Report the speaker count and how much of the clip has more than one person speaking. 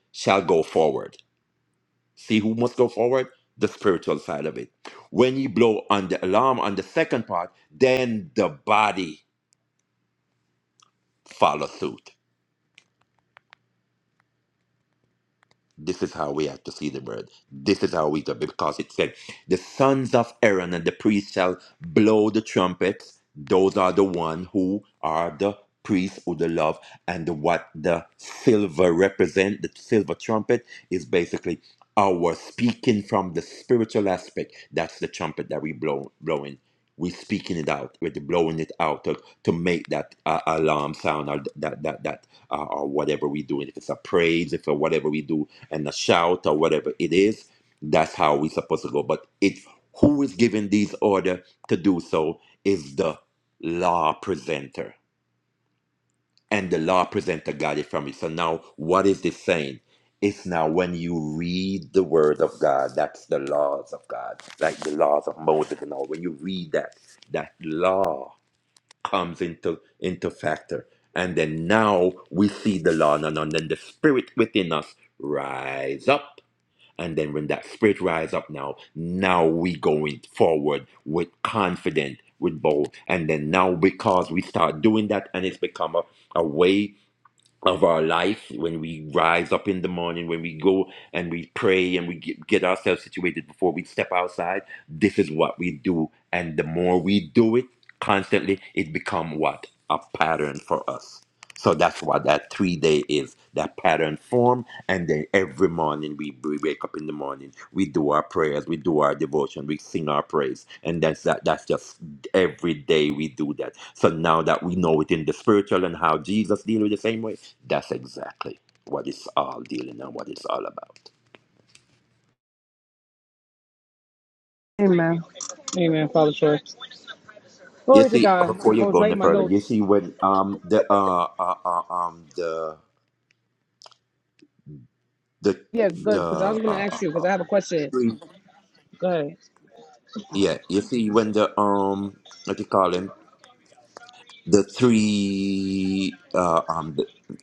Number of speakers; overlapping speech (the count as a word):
two, about 1%